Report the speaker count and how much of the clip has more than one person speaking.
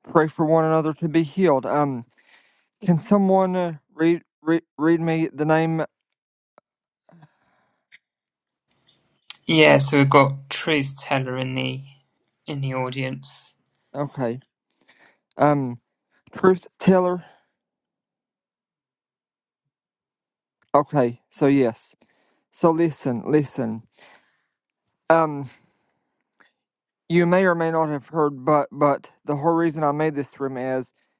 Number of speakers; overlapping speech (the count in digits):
2, no overlap